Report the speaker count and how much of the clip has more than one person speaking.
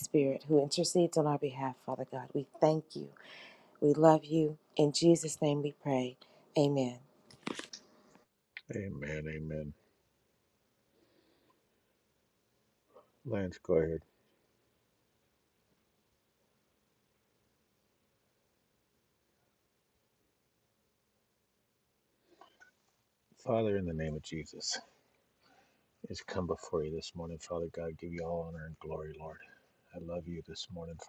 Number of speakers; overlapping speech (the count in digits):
2, no overlap